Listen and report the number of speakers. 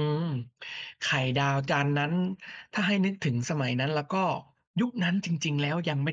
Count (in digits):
1